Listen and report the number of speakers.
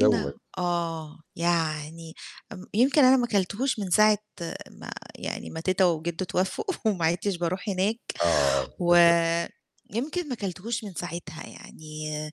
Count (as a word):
two